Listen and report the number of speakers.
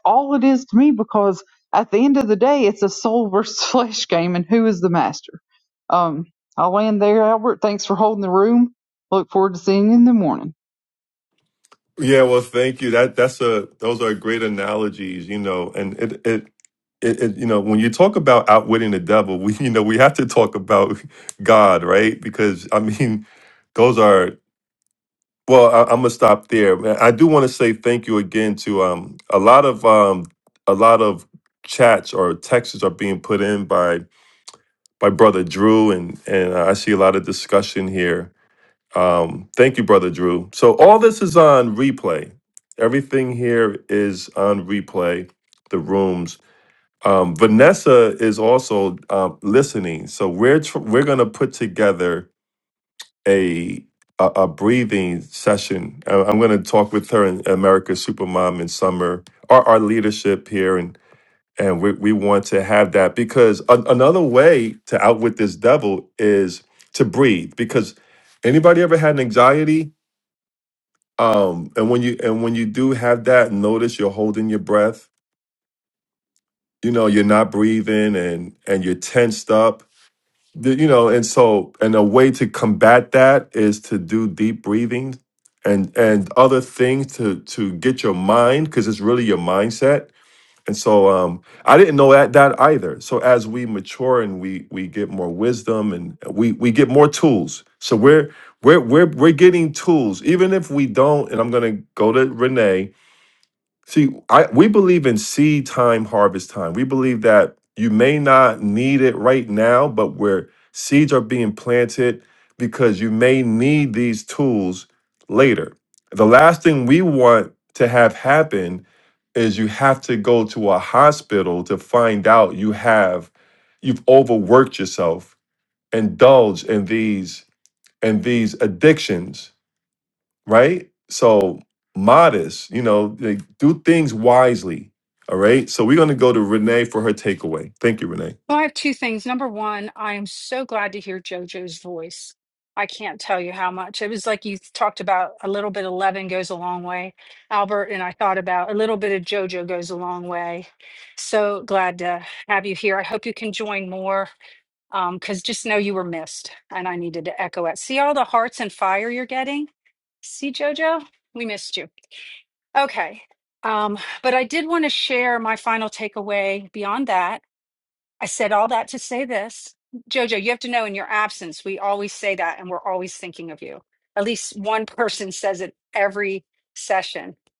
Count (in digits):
3